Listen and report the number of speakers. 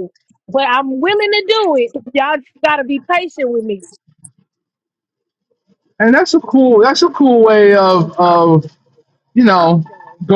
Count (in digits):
2